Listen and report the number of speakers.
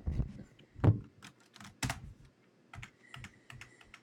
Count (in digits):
0